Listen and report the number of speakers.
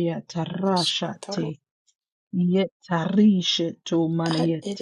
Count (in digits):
2